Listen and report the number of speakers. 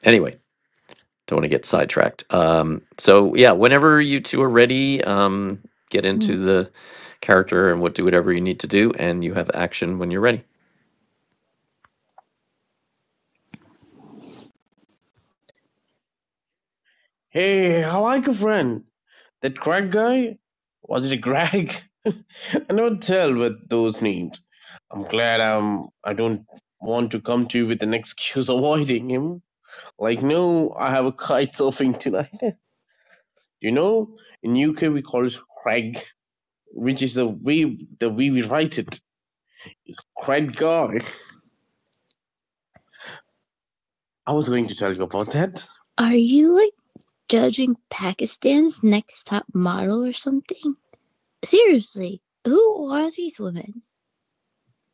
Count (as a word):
three